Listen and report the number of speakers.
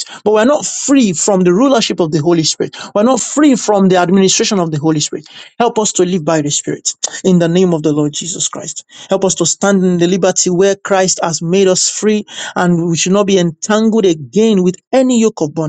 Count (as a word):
one